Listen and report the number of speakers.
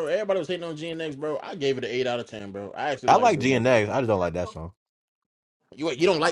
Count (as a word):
two